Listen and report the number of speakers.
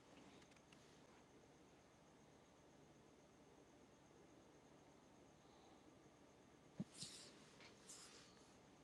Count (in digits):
0